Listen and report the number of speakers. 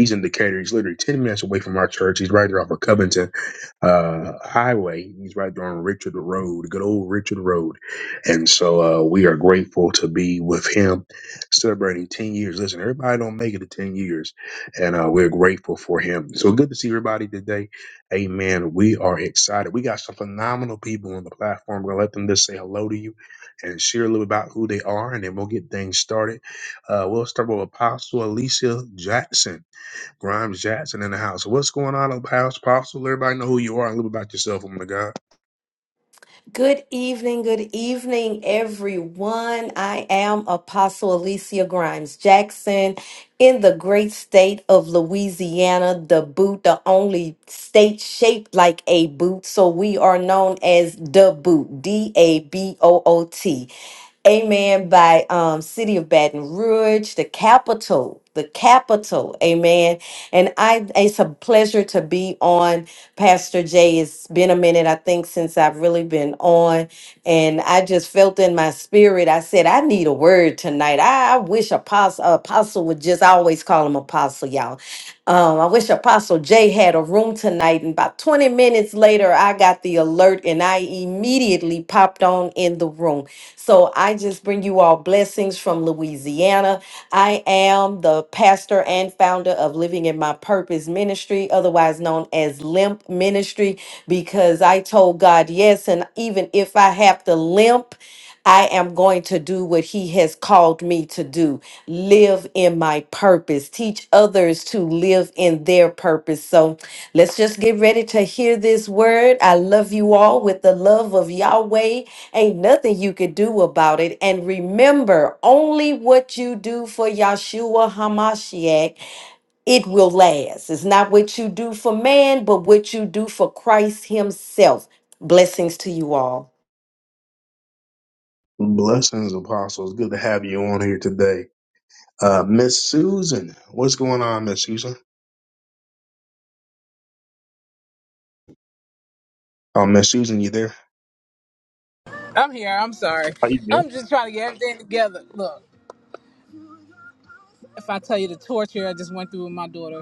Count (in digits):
3